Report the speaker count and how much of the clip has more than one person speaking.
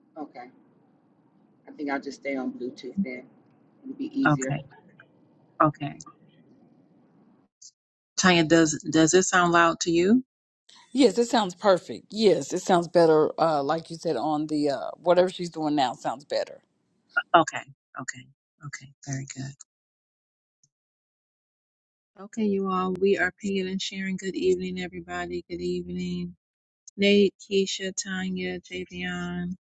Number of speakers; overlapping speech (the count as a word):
three, about 1%